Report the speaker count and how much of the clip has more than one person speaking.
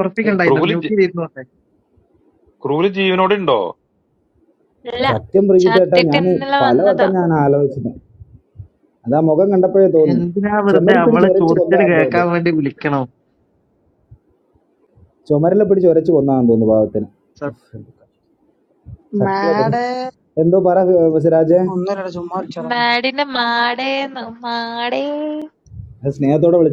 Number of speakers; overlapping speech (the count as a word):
five, about 17%